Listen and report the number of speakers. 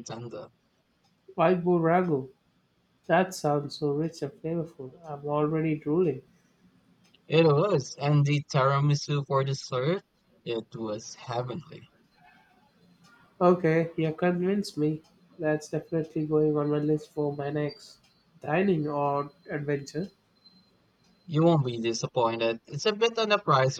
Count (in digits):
2